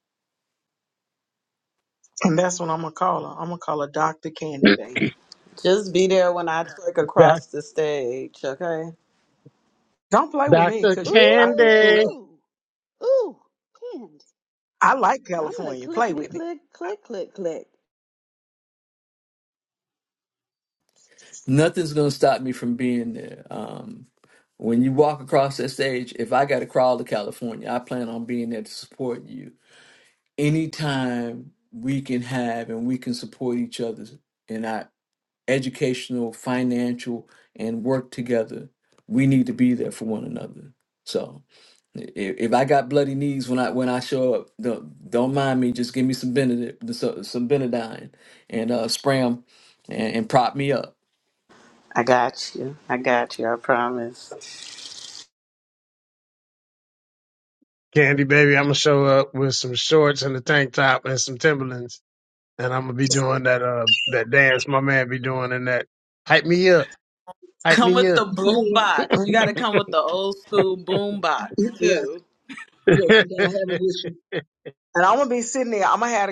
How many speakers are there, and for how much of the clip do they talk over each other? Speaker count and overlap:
5, about 6%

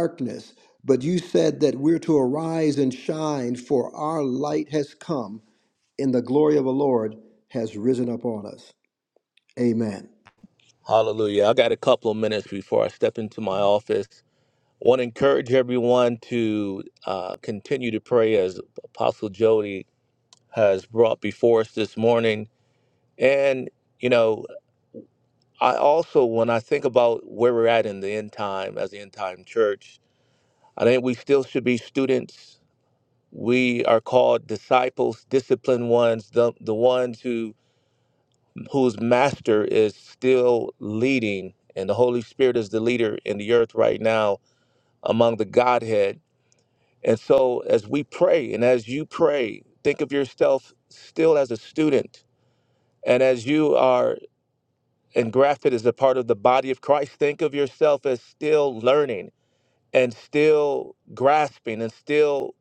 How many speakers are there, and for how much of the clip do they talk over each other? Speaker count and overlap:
2, no overlap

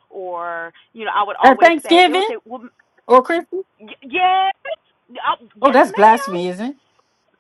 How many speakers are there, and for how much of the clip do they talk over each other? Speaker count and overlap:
2, about 22%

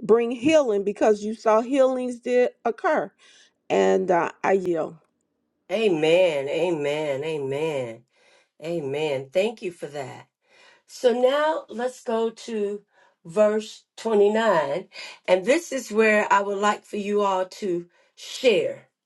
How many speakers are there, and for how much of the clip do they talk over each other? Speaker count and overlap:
2, no overlap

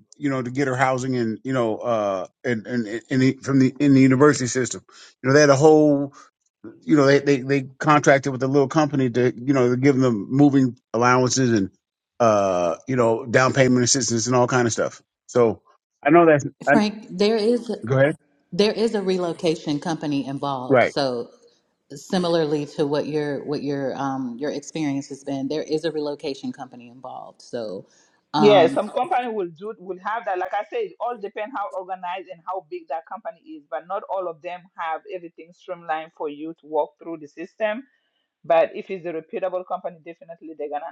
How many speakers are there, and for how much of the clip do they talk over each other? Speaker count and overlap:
3, about 2%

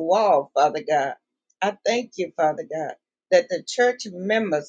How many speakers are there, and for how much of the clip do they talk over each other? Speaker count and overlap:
1, no overlap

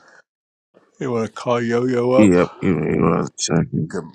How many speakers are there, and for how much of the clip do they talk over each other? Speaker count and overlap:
2, about 6%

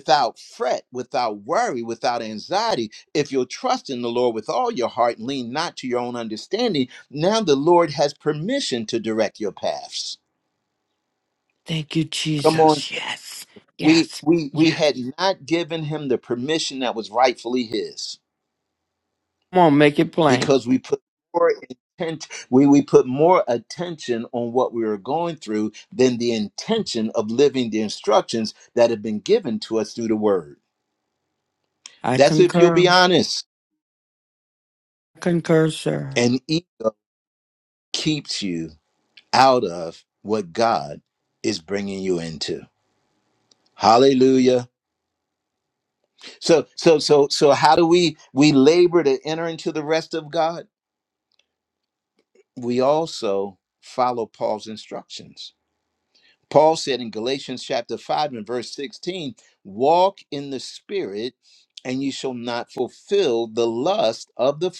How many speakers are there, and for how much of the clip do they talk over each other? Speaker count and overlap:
2, about 3%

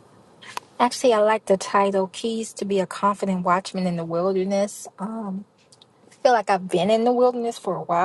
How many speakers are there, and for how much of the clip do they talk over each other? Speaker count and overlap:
1, no overlap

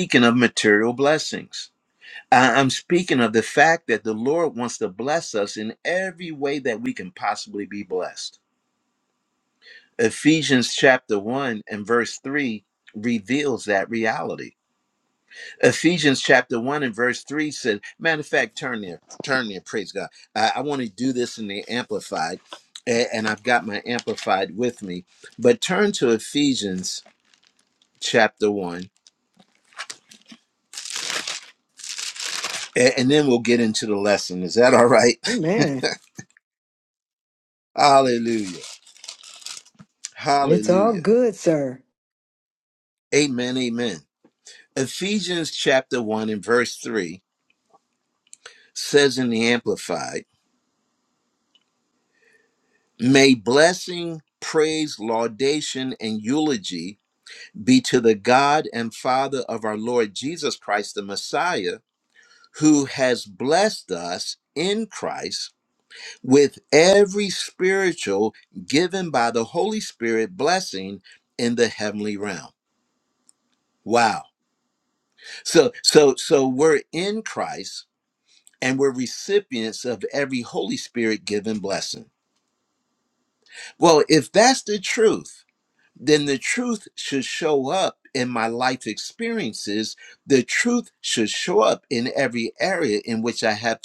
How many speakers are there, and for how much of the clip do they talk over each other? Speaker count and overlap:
2, about 1%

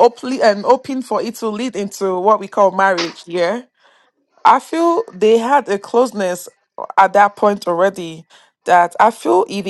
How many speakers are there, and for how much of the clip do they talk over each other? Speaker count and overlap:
1, no overlap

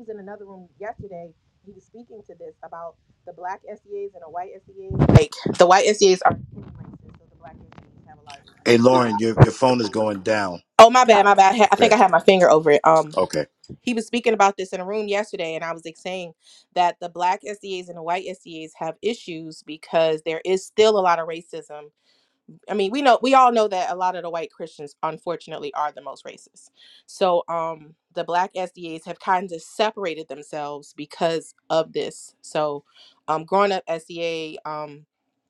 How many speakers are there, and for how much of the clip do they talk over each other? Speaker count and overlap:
2, about 1%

